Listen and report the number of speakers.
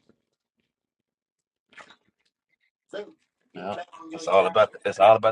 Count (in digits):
1